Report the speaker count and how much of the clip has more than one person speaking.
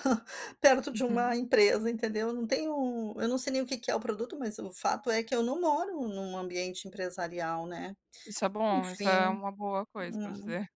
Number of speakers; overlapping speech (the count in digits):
2, about 15%